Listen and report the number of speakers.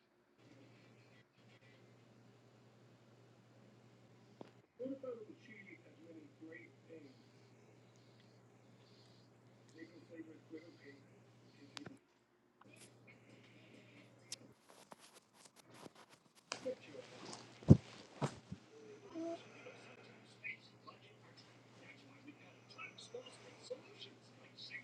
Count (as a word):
zero